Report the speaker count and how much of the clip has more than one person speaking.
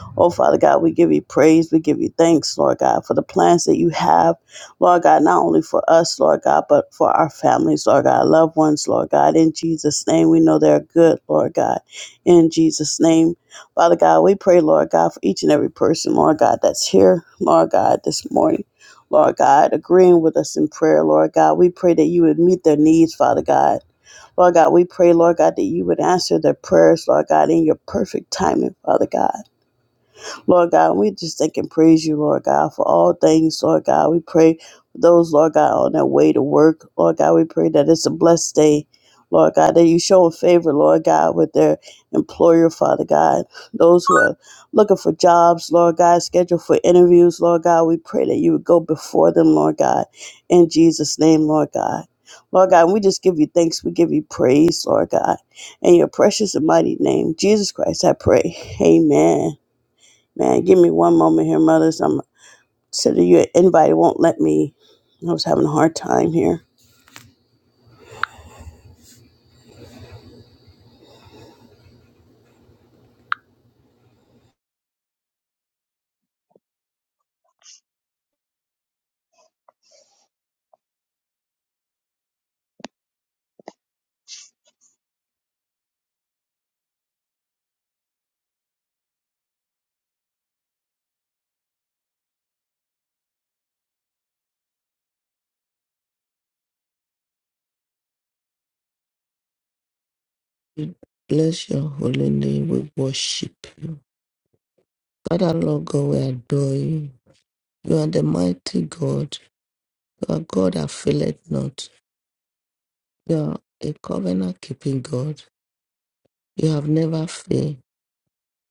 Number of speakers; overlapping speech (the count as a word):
two, no overlap